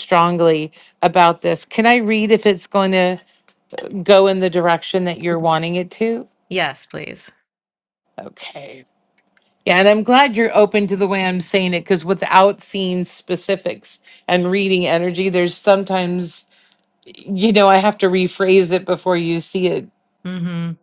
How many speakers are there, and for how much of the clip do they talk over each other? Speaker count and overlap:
2, no overlap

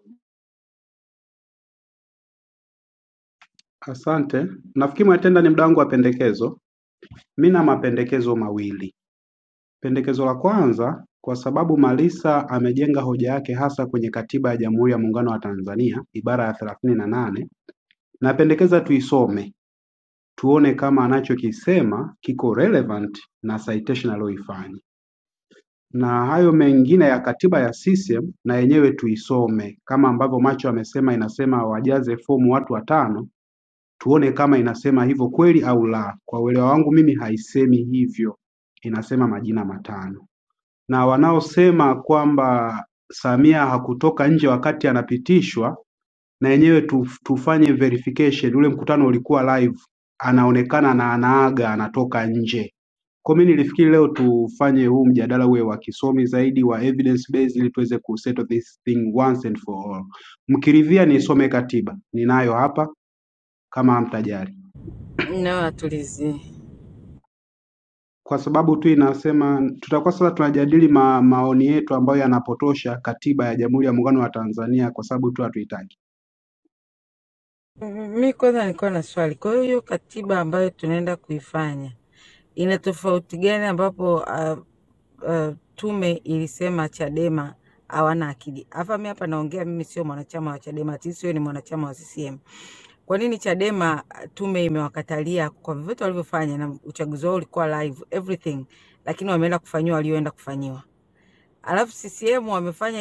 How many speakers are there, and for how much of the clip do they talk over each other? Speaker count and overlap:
2, no overlap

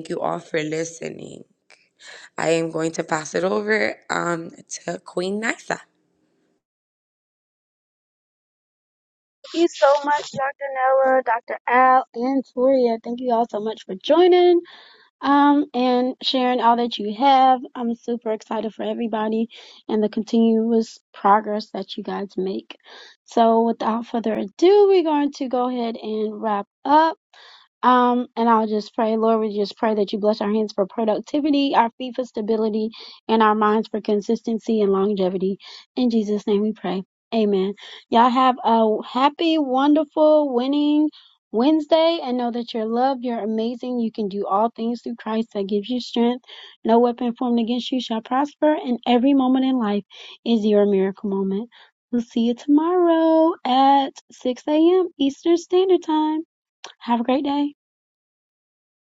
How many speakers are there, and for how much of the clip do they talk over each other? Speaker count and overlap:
2, no overlap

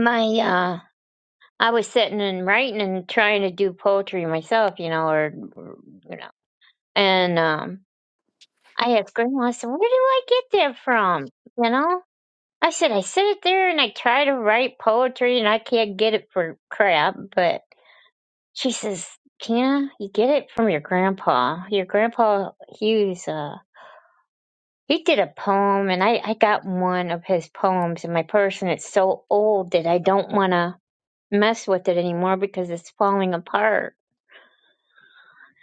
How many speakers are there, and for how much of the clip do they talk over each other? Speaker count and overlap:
1, no overlap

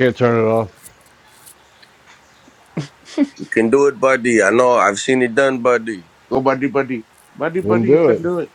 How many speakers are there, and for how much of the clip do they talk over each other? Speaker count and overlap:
3, about 7%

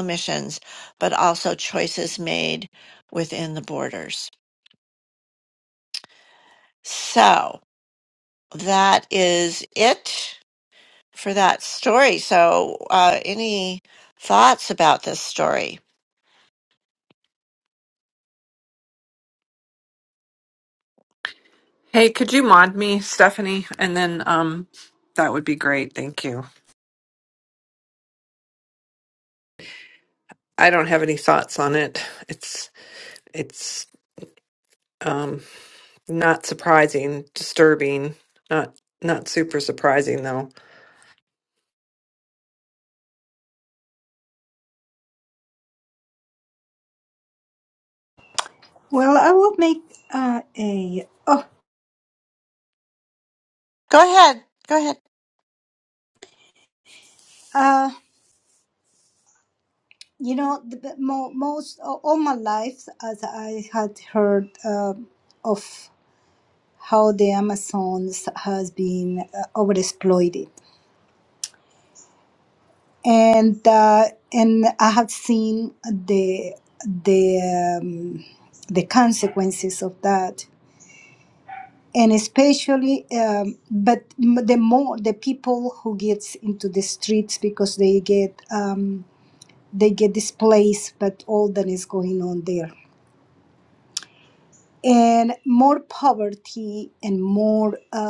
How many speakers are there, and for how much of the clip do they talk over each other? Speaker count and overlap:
3, no overlap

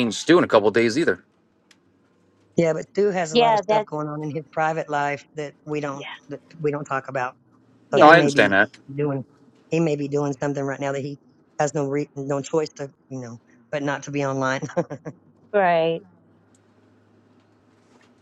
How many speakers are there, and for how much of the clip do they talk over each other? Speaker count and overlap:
3, about 7%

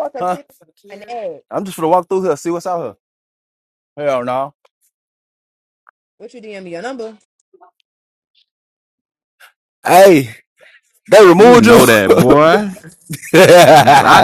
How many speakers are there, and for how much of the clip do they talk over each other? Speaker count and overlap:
3, about 4%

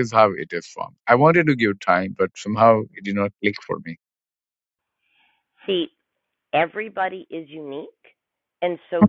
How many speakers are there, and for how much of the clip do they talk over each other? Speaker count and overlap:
2, no overlap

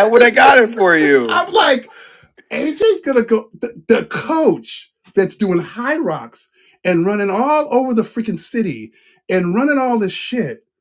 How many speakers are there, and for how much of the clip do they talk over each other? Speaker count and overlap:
2, about 1%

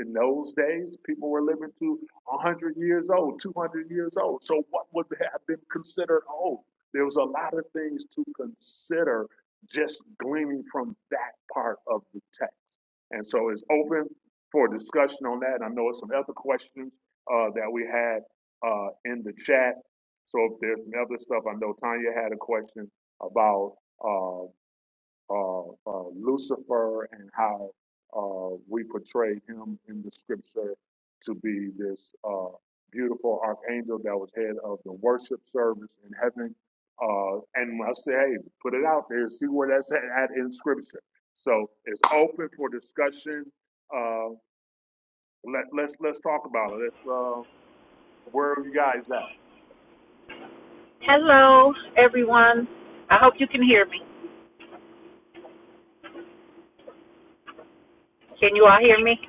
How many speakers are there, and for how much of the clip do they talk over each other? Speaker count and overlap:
2, no overlap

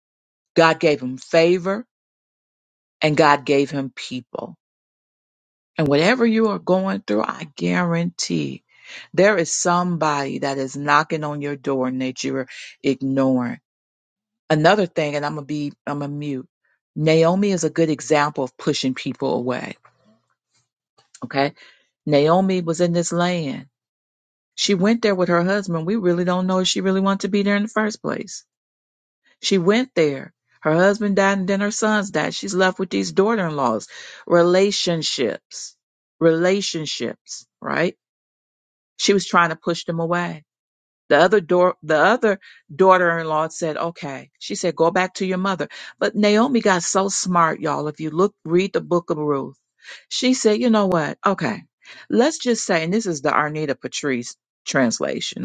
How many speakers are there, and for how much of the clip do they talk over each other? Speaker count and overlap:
1, no overlap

